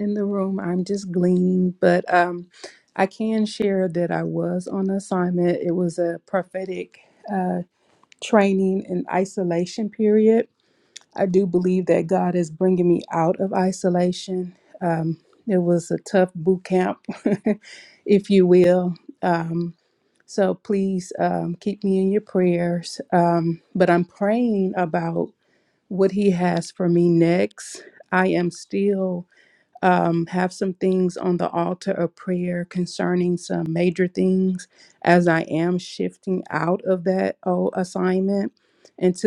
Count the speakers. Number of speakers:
one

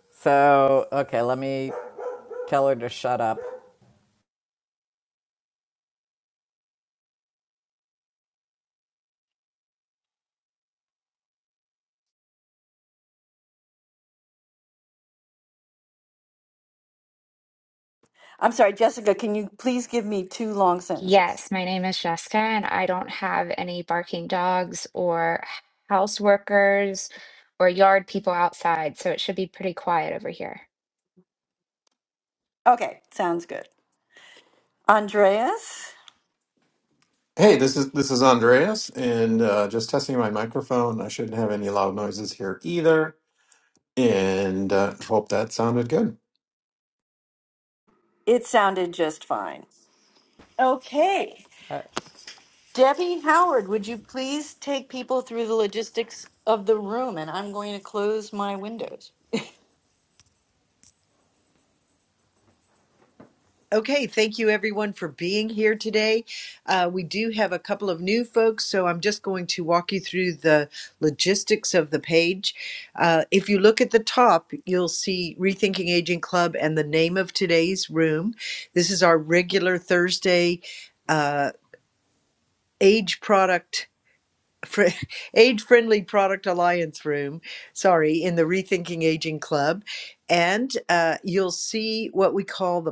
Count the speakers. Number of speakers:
five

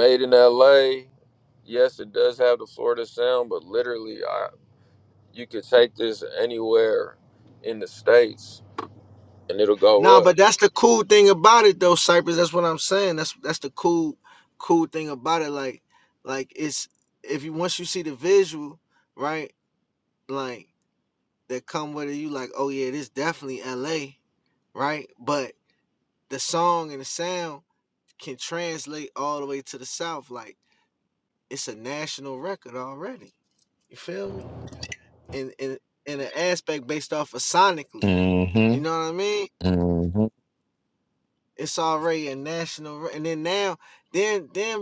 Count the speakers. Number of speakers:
three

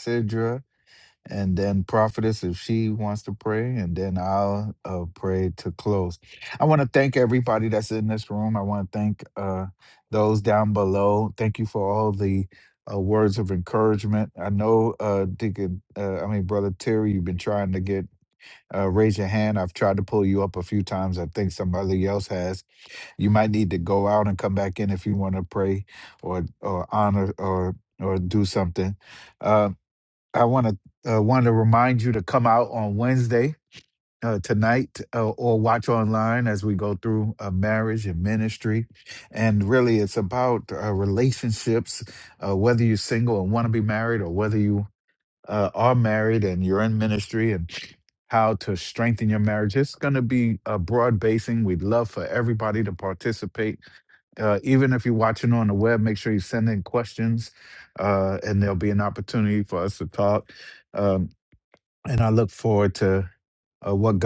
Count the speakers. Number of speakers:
one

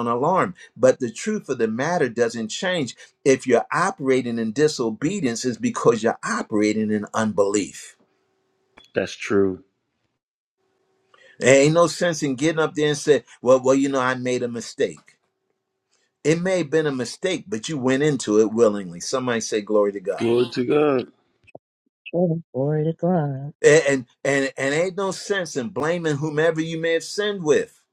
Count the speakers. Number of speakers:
three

